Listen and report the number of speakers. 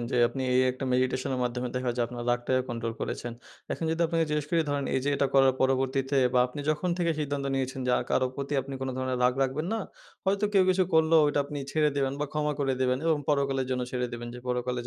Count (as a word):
one